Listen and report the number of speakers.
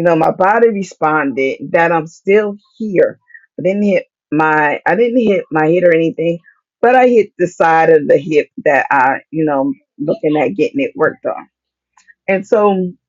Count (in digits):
1